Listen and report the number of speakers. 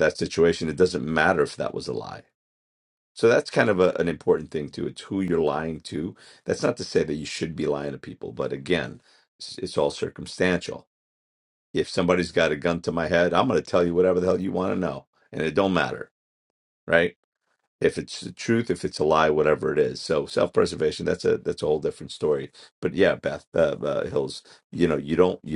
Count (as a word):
one